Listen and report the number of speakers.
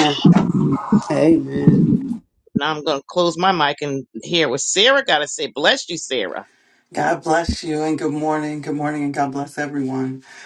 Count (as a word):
three